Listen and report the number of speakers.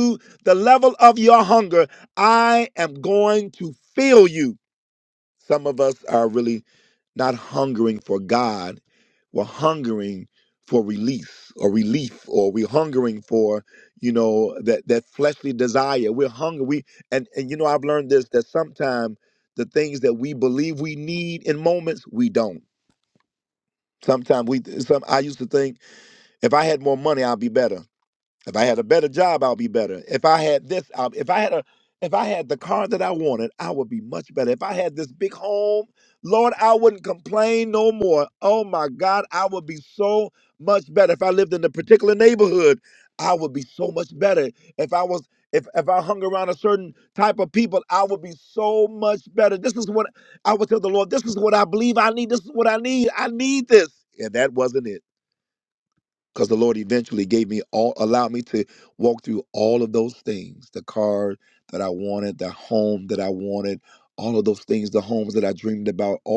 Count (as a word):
one